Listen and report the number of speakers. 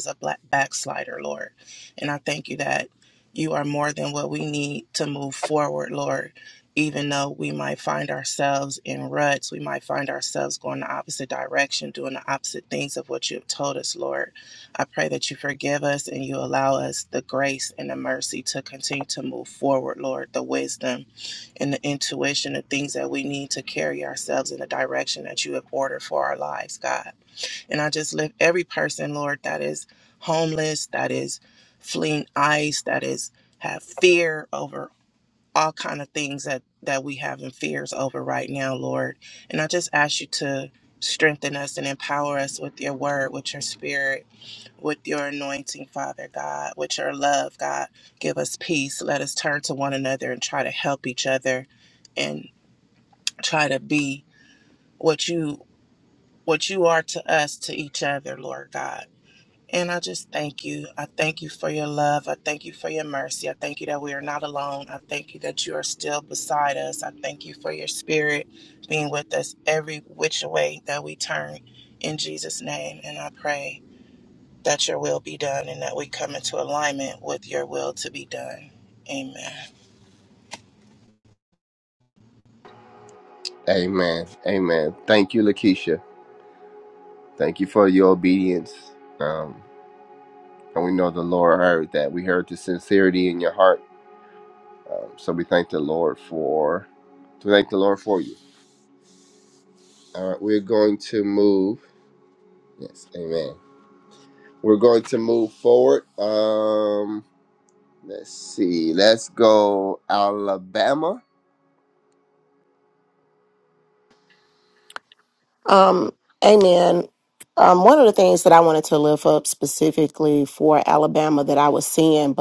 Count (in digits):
3